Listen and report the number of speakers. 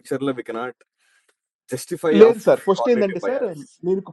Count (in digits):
2